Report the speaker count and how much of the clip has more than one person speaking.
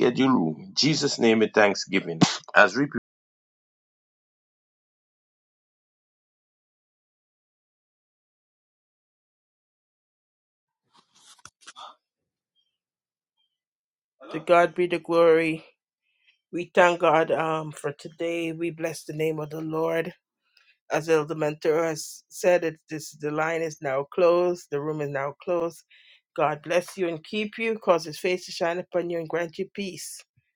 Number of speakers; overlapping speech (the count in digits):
2, no overlap